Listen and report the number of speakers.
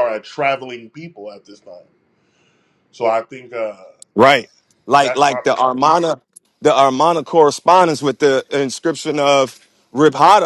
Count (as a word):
two